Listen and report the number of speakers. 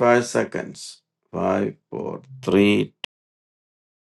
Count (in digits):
1